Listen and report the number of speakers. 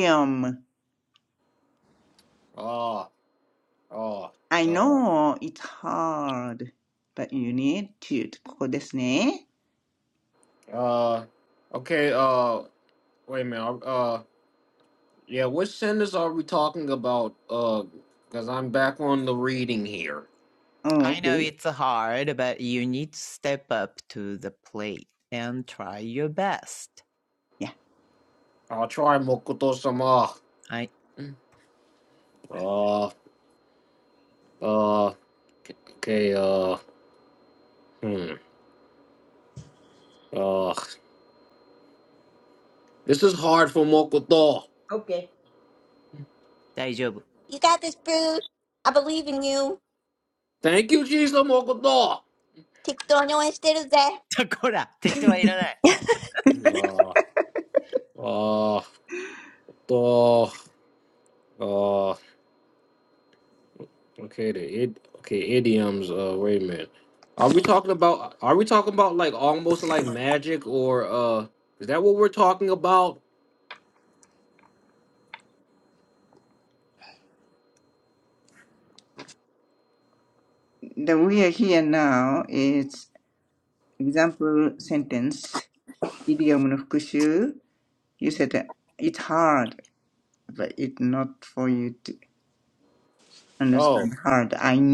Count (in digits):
4